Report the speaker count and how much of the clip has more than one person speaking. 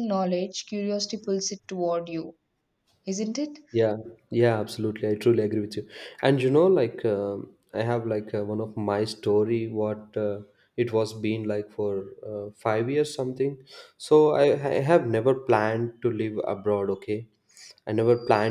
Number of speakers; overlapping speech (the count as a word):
two, no overlap